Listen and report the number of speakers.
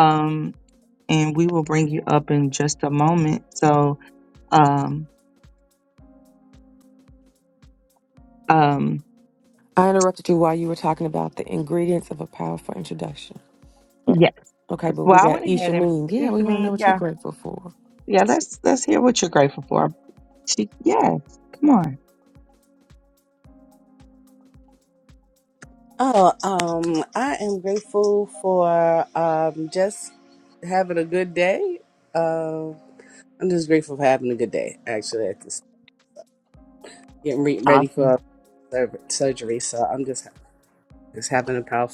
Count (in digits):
3